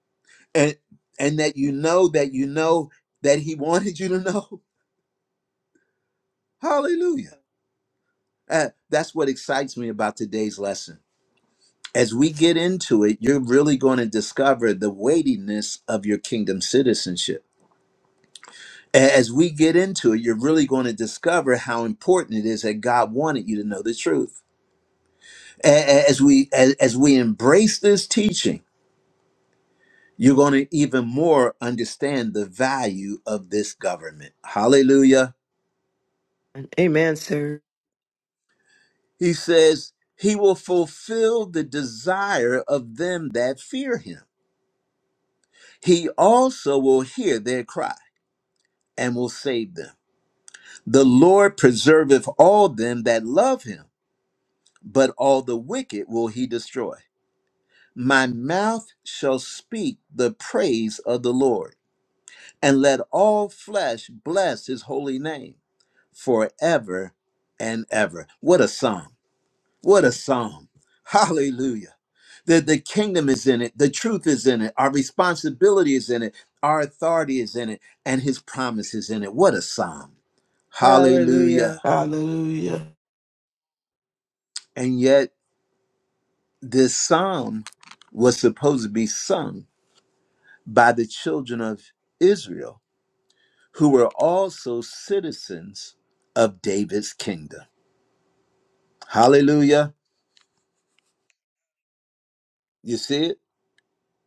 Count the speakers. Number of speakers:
three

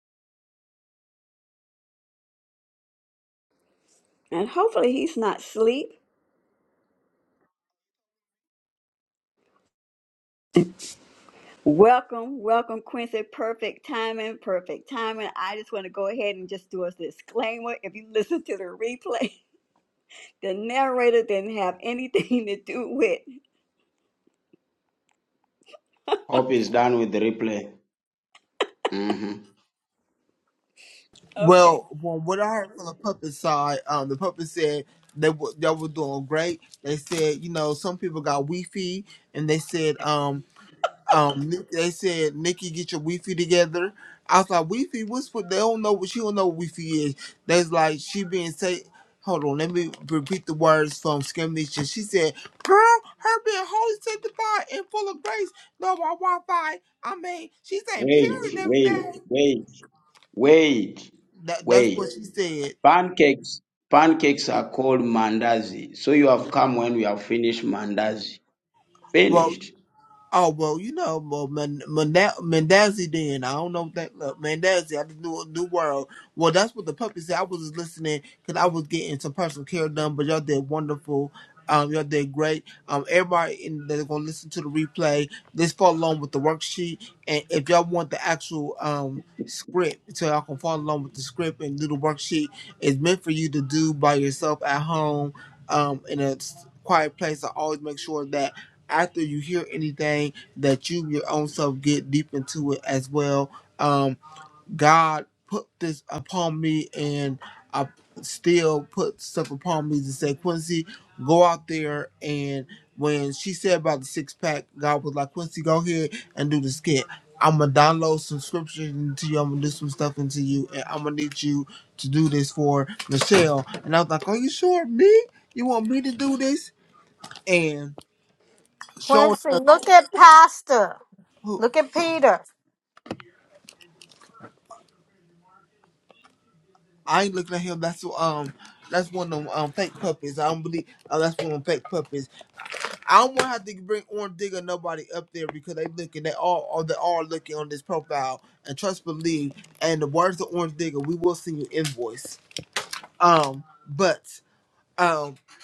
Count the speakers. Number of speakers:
four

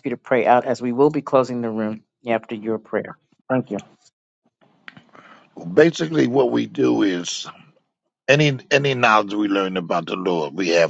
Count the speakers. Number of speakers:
two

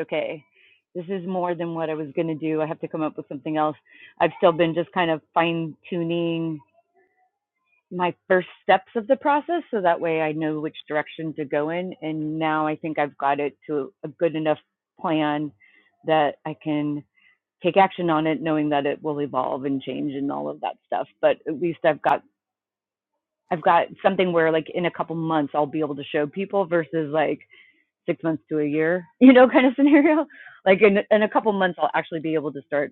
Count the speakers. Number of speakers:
one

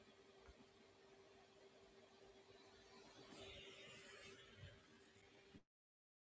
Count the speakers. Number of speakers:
zero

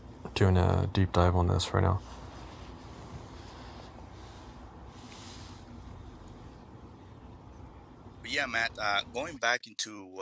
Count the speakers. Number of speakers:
two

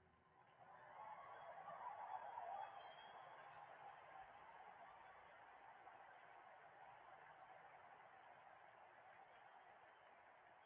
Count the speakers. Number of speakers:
zero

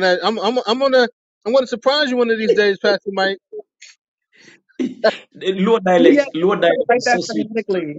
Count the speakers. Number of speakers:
three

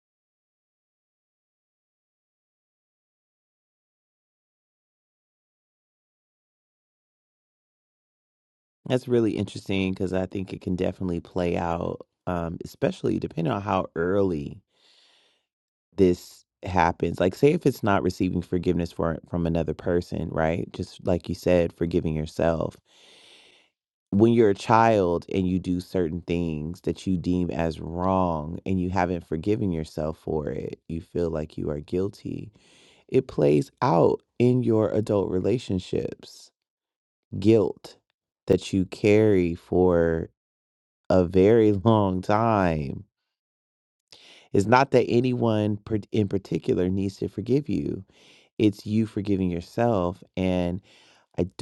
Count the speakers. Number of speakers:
one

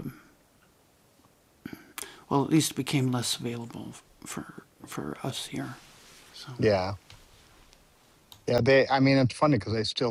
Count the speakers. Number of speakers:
two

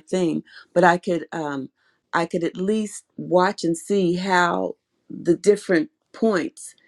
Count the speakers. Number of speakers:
one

